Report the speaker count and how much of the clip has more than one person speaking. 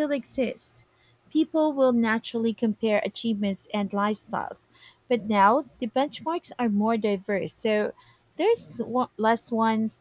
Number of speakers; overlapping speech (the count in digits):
1, no overlap